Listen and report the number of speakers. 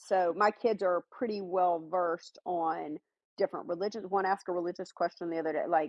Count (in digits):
1